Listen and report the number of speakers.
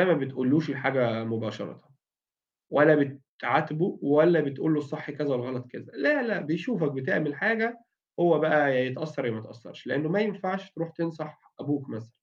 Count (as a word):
one